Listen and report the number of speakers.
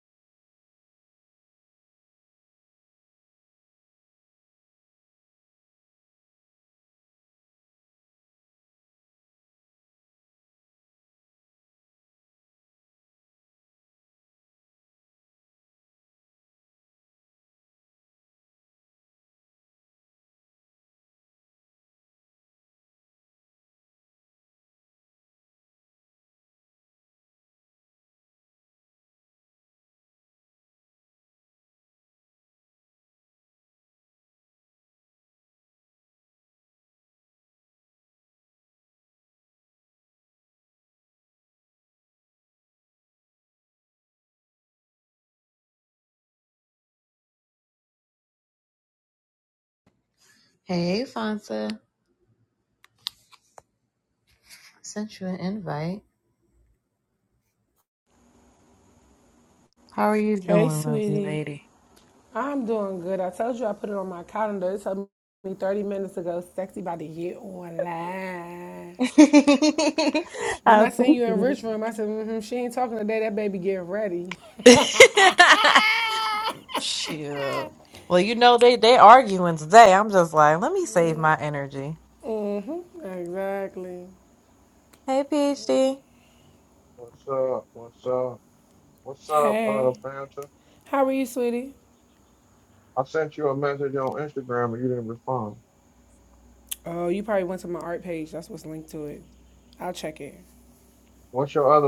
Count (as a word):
three